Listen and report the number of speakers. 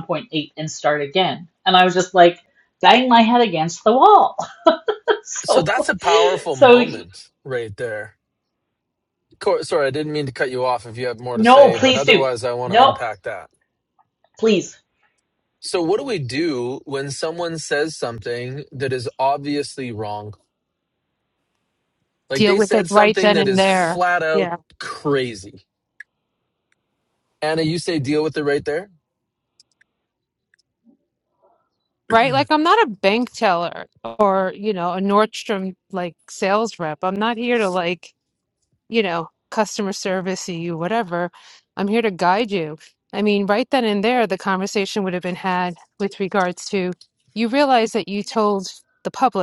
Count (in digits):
3